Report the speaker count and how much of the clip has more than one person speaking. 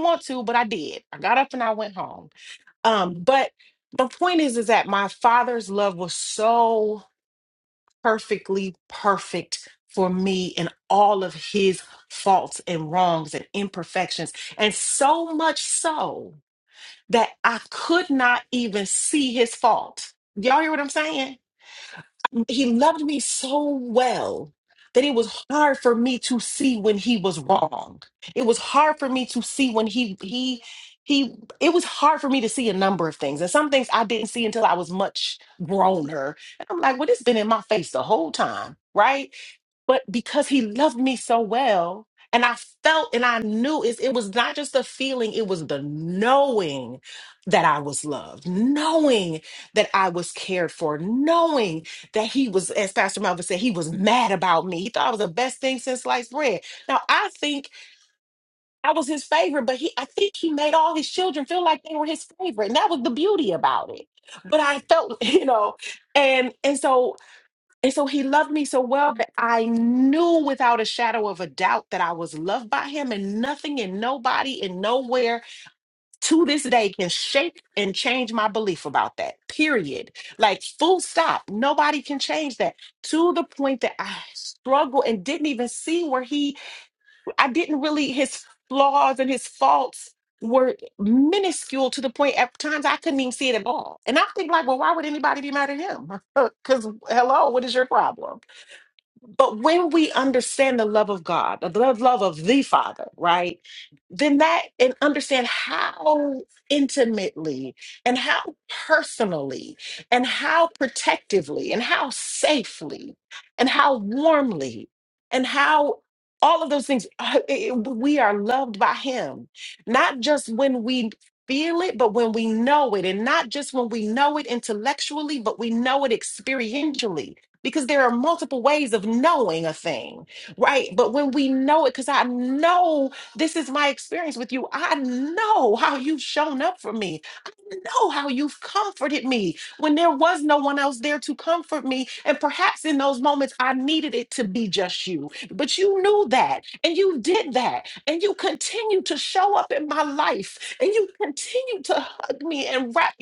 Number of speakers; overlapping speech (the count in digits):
1, no overlap